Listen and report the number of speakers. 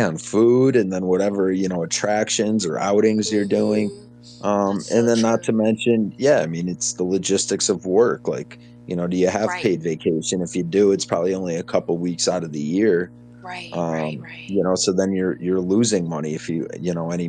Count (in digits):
2